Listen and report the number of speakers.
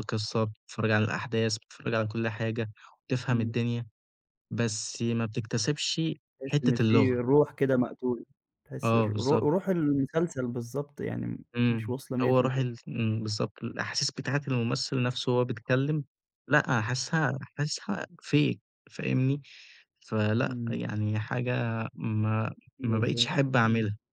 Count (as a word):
two